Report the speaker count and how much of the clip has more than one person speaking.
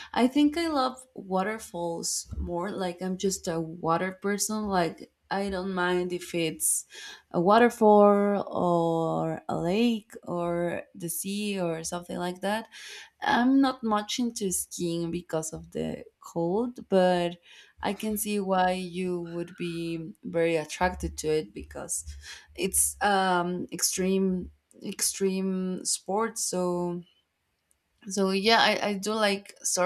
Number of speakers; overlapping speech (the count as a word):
one, no overlap